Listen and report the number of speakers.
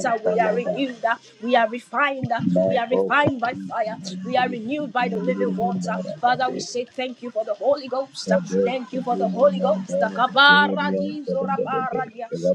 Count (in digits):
2